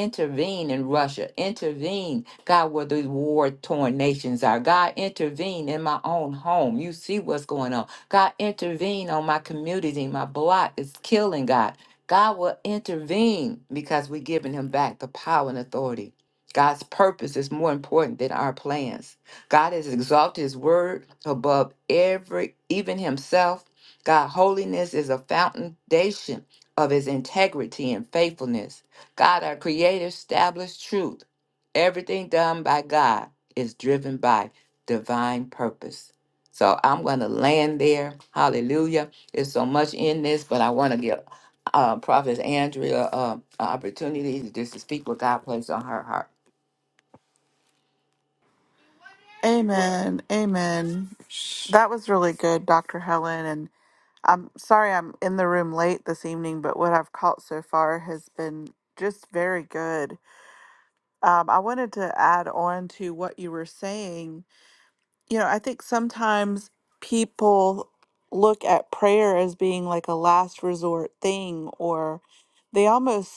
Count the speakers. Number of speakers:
2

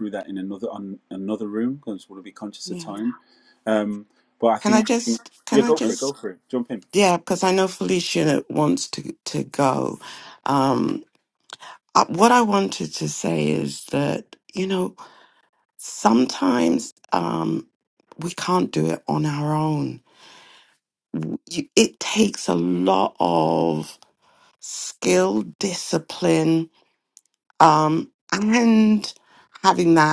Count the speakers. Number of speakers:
2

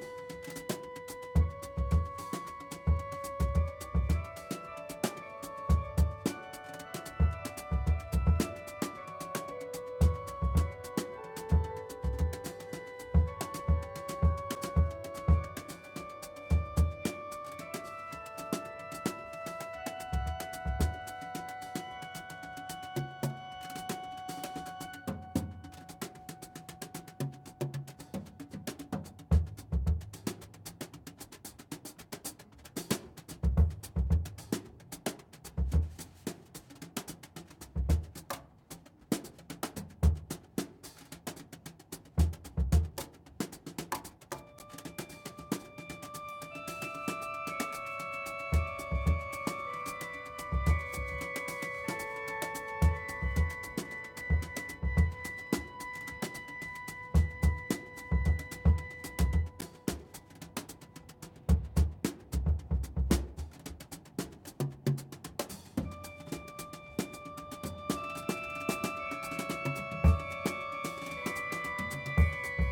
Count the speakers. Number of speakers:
0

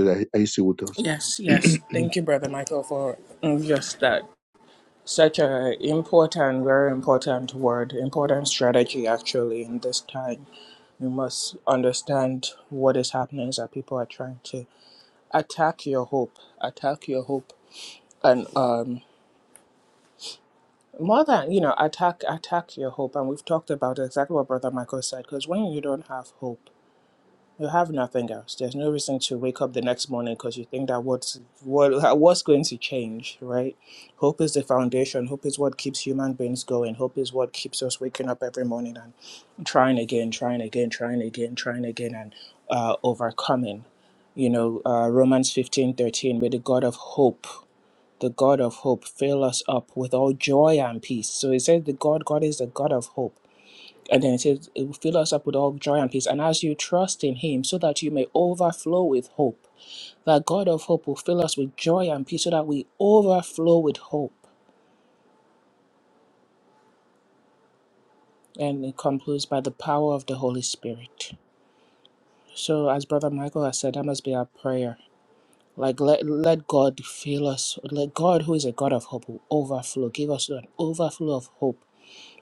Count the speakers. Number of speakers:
2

